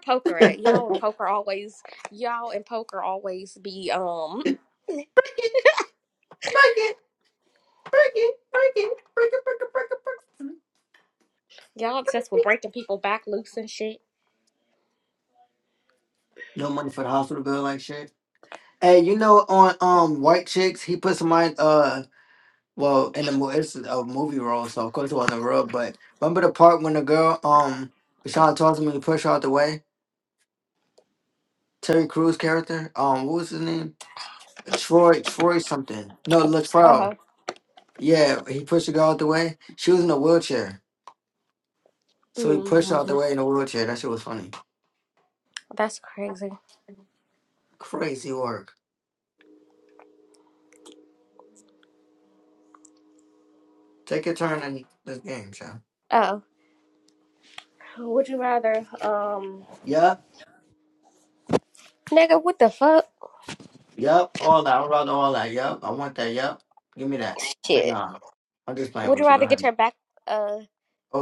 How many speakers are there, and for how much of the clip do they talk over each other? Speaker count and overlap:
2, about 4%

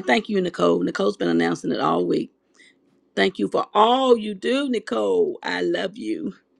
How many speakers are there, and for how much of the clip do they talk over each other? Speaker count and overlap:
1, no overlap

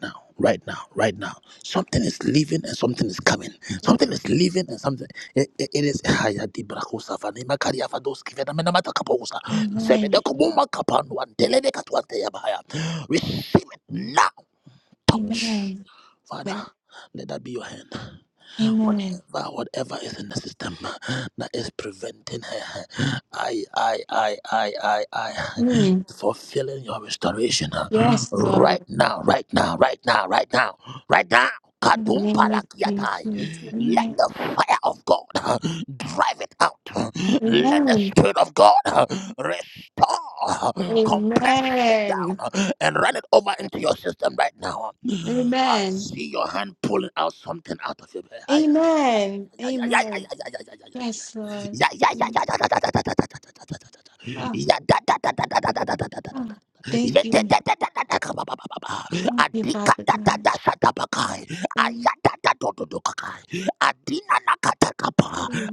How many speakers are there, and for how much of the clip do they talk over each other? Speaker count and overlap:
2, about 14%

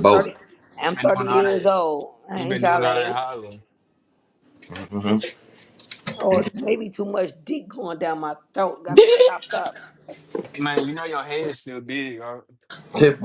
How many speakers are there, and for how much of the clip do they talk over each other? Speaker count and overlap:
3, about 14%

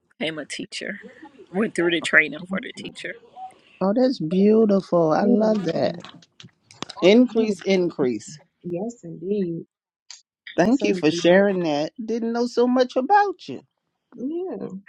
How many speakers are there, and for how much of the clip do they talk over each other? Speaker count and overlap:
3, about 12%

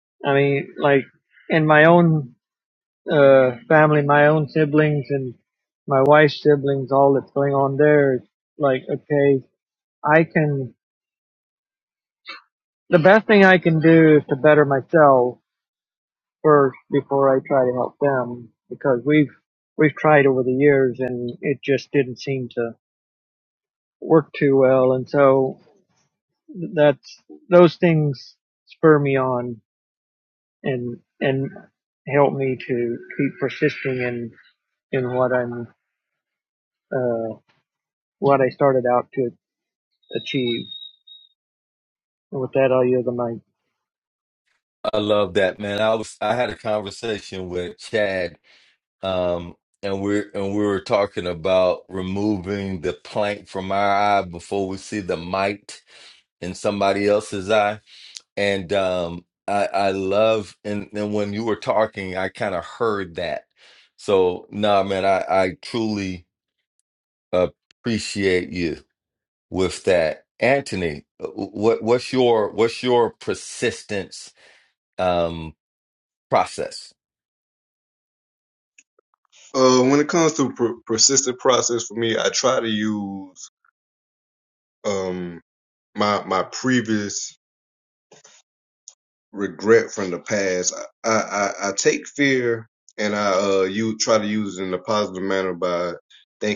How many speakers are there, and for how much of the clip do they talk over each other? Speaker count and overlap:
3, no overlap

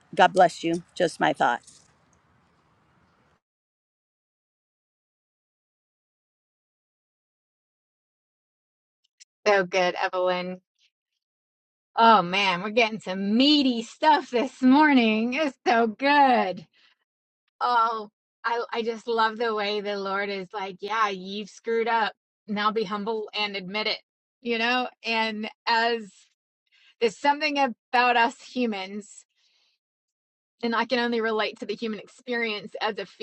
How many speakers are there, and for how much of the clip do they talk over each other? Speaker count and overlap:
2, no overlap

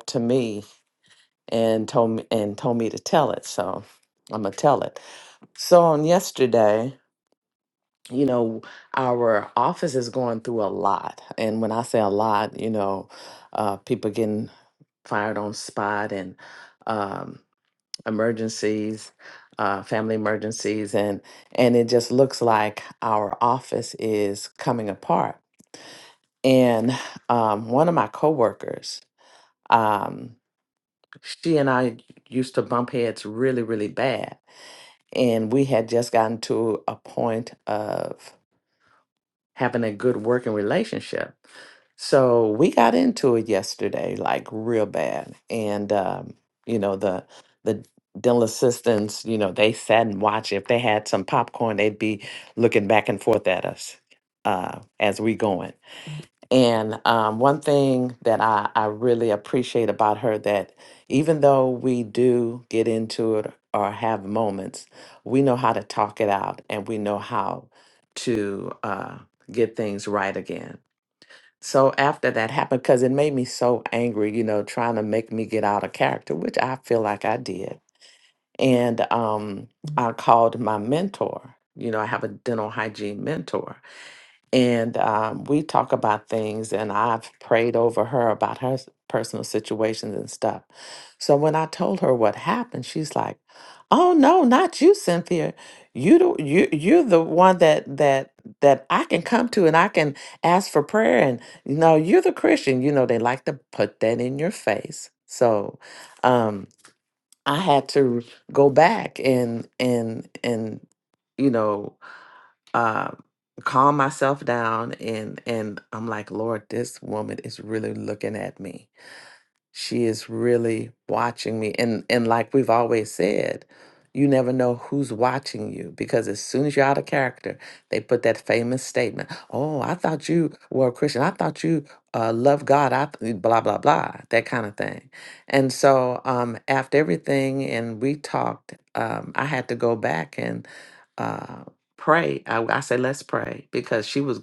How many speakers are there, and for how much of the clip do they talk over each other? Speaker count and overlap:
1, no overlap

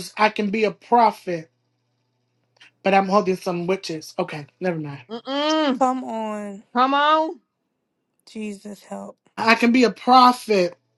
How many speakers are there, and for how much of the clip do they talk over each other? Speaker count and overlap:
3, no overlap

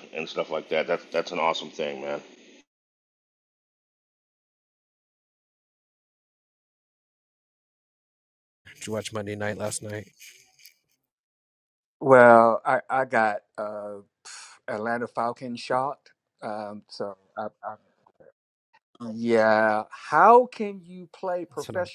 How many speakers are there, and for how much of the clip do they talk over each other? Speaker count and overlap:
3, about 2%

